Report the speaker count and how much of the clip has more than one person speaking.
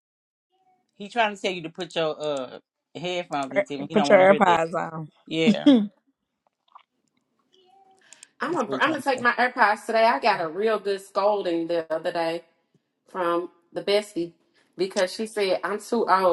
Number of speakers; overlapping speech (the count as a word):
three, about 11%